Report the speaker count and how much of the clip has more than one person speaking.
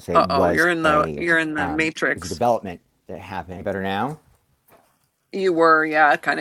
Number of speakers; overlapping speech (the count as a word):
two, about 28%